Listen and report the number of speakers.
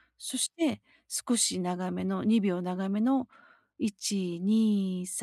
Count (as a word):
one